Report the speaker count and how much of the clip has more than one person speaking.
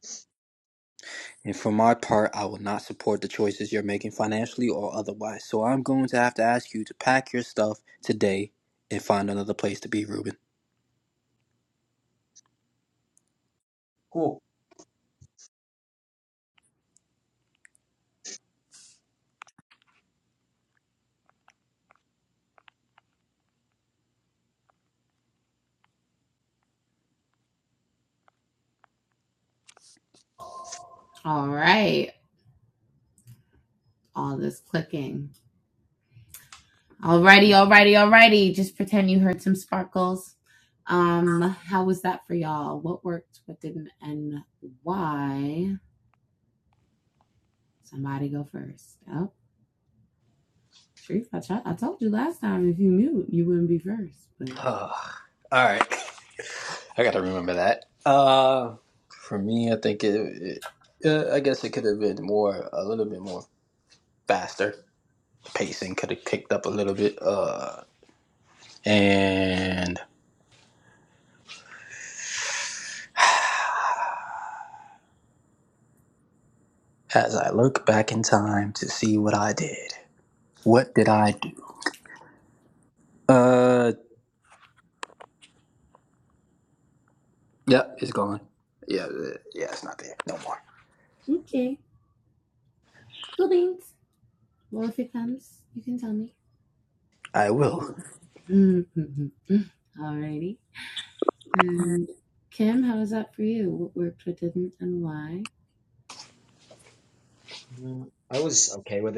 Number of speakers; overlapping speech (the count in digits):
3, no overlap